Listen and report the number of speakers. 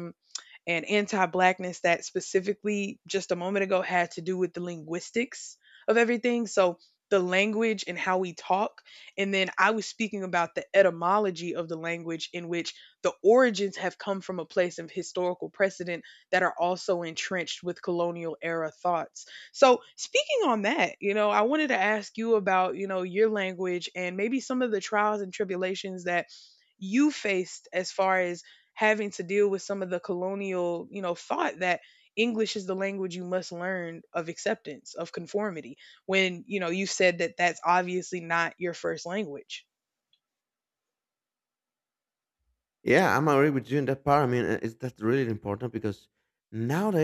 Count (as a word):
two